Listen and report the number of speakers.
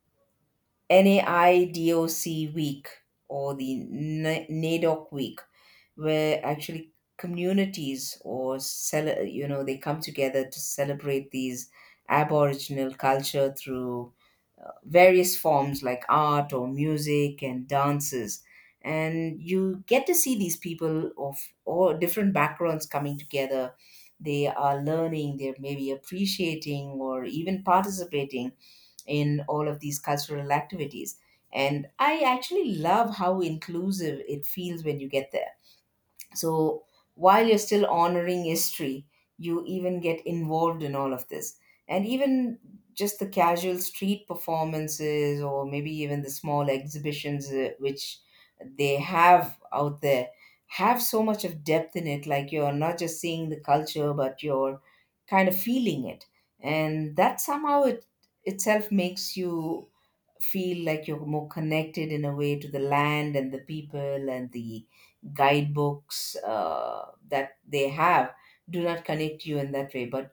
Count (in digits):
1